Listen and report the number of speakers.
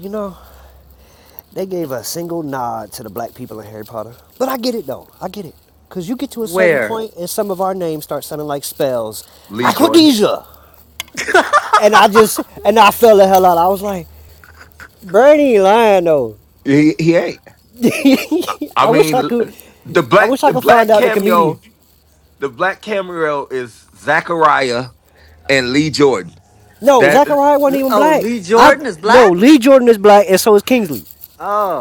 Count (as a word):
three